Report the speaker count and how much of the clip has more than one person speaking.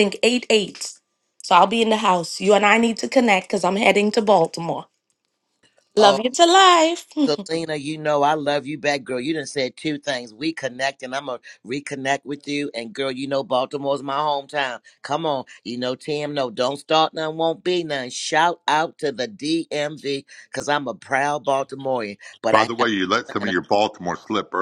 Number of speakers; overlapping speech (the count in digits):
3, about 3%